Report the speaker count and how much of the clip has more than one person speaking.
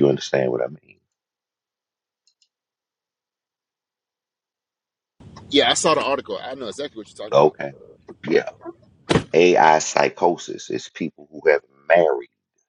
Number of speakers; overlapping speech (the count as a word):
two, about 2%